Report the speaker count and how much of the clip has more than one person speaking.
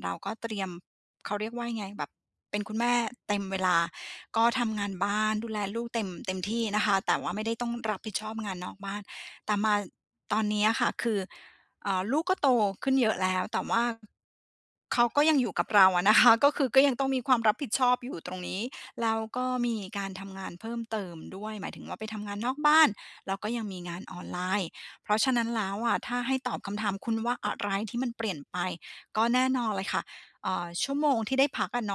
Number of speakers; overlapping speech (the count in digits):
1, no overlap